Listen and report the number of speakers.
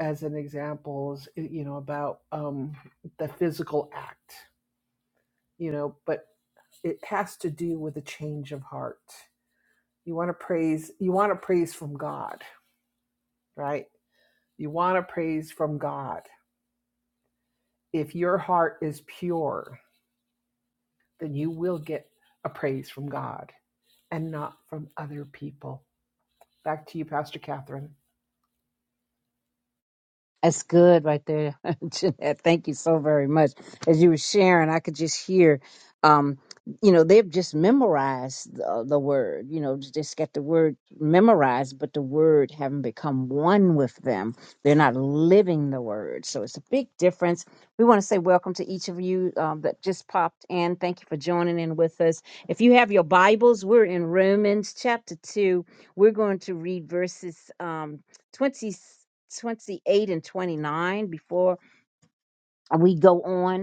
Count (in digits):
2